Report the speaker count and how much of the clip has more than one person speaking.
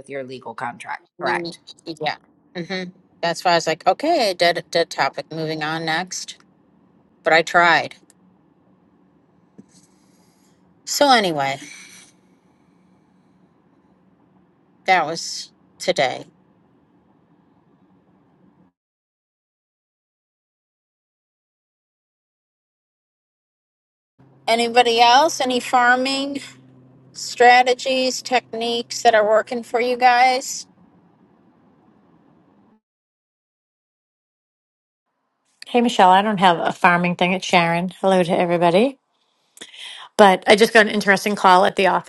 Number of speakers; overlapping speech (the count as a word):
three, about 1%